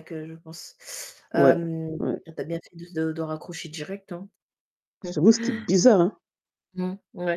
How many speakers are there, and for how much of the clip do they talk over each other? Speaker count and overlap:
2, about 7%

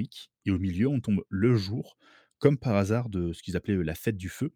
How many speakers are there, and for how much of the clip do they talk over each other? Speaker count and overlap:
1, no overlap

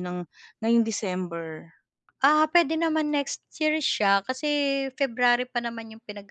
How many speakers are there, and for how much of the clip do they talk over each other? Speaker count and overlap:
2, no overlap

